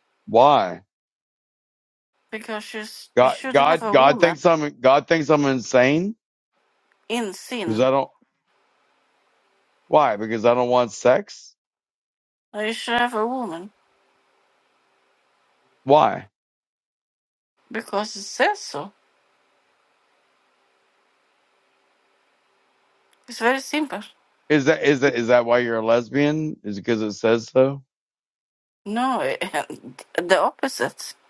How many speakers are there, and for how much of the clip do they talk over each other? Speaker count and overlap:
two, about 4%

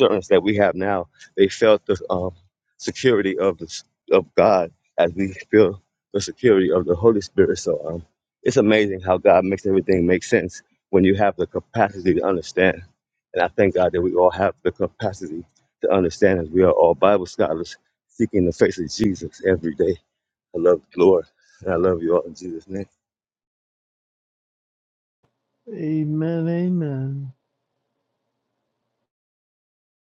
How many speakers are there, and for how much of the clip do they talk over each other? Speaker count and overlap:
two, no overlap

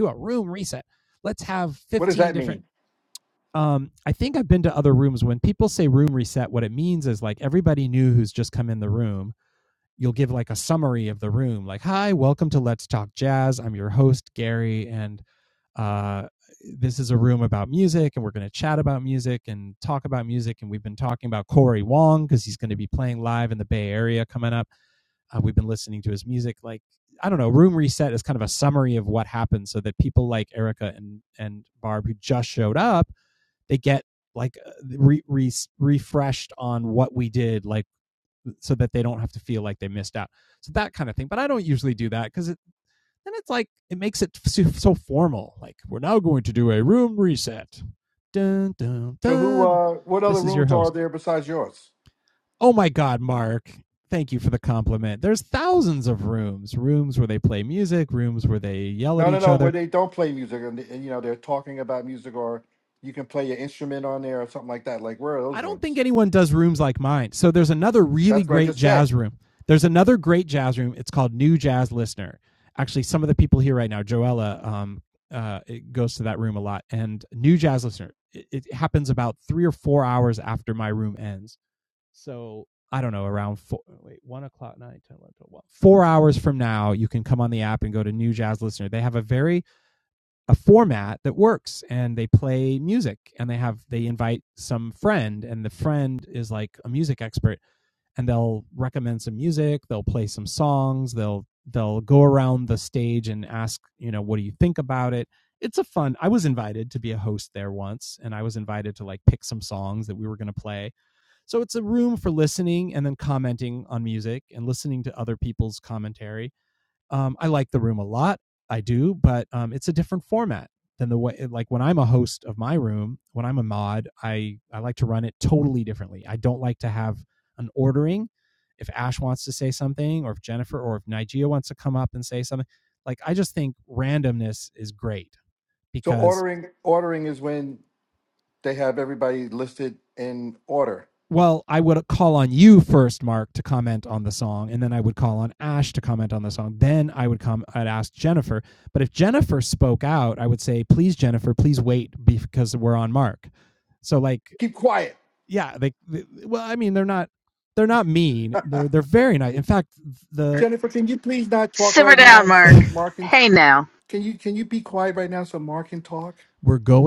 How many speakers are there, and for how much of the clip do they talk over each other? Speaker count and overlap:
three, about 3%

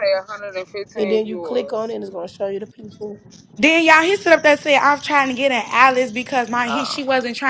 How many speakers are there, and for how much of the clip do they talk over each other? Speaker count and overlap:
three, about 15%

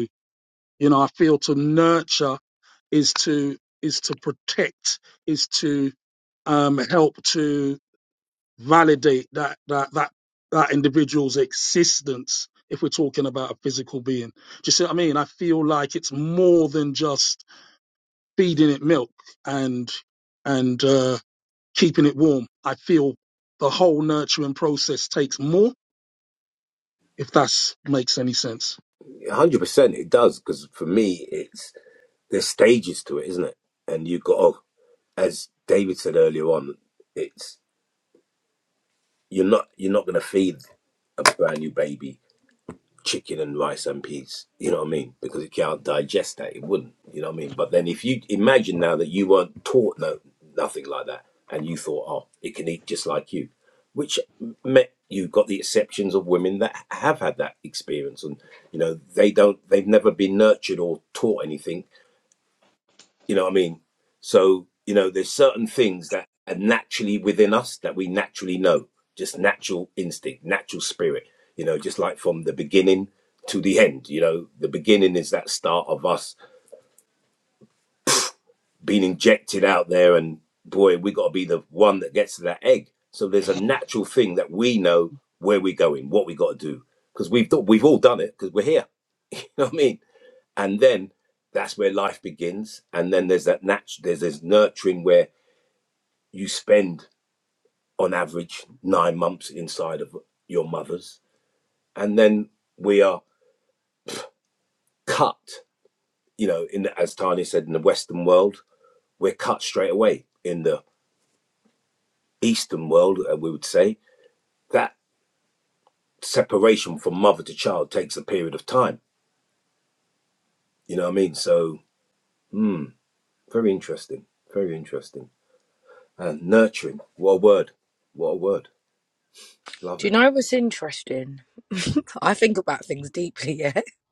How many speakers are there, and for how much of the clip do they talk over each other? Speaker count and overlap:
three, under 1%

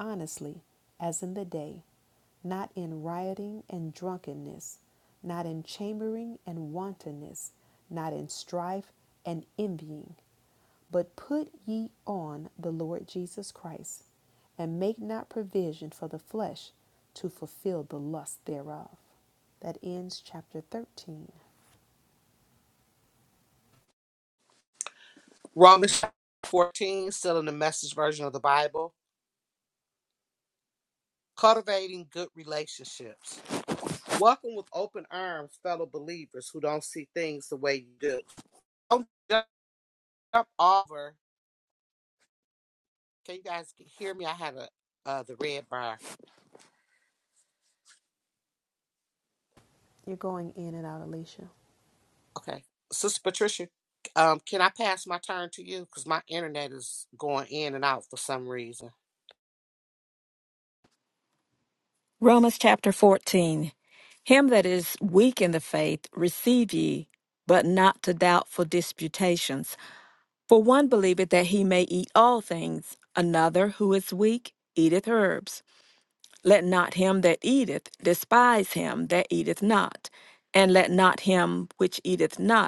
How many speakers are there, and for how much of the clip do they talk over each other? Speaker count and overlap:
three, no overlap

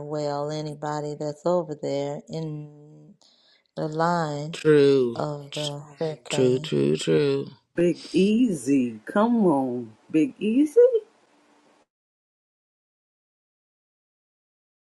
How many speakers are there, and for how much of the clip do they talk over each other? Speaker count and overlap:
three, about 4%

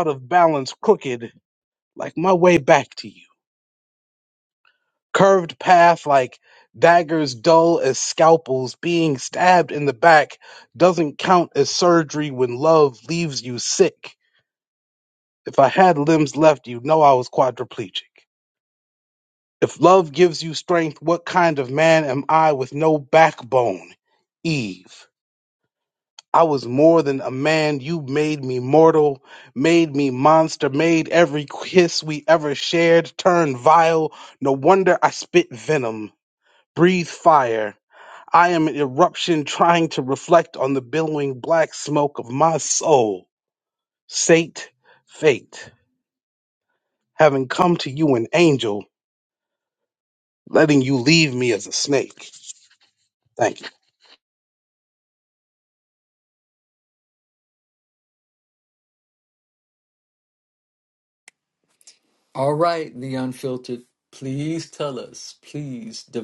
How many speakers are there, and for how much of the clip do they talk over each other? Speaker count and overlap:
two, no overlap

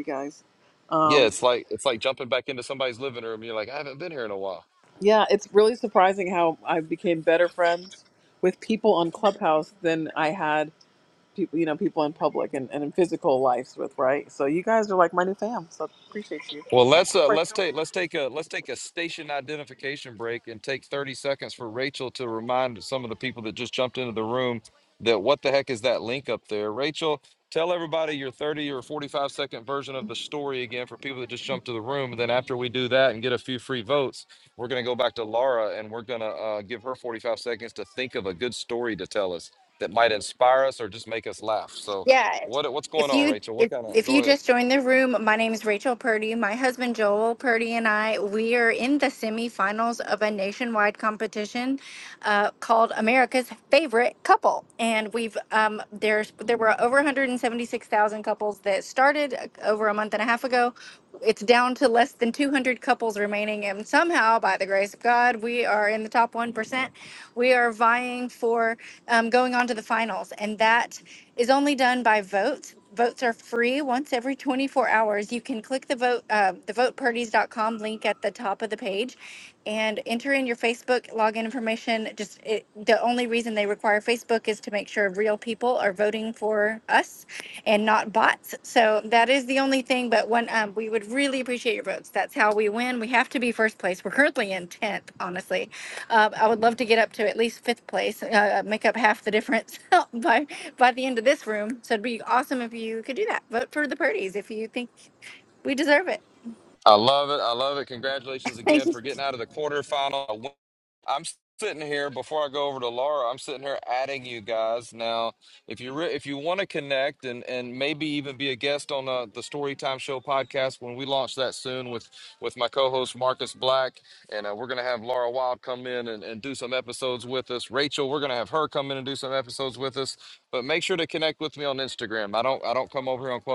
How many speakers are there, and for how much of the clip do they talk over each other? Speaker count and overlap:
three, about 2%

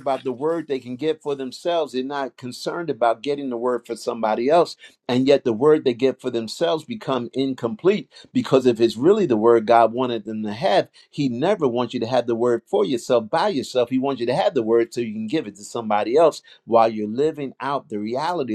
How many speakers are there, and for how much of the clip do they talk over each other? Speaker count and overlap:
one, no overlap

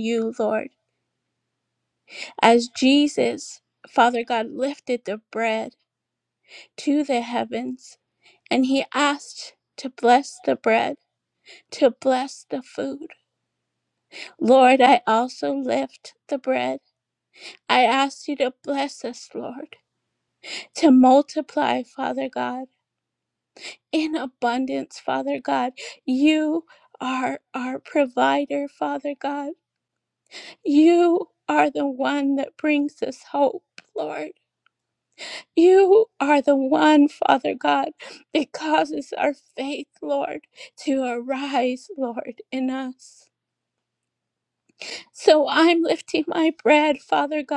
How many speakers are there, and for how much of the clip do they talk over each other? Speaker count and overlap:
one, no overlap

